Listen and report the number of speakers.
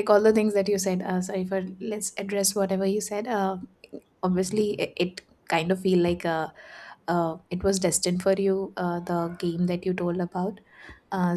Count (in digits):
1